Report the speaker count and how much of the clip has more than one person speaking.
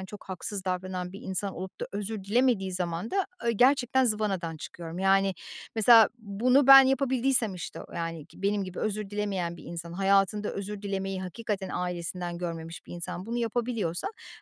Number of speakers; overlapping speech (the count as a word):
one, no overlap